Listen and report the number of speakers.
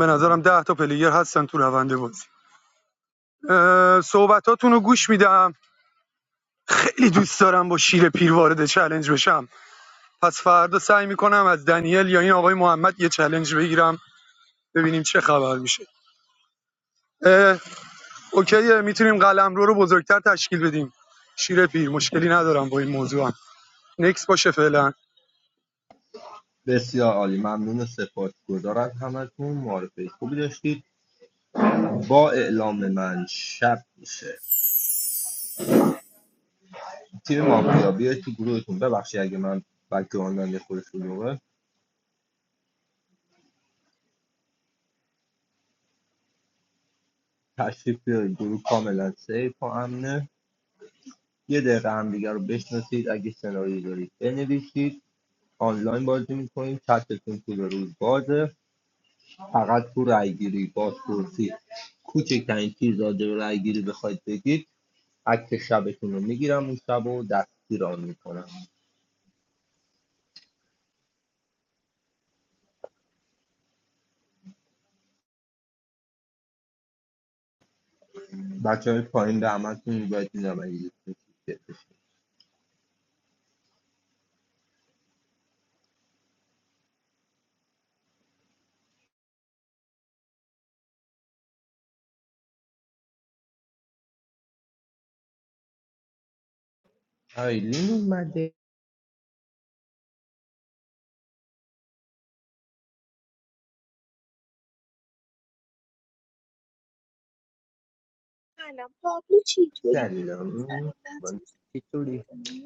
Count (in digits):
3